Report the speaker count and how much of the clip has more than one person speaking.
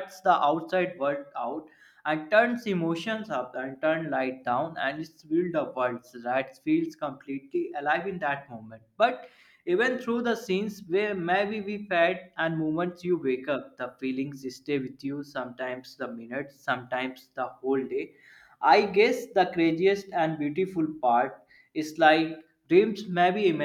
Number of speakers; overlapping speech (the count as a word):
one, no overlap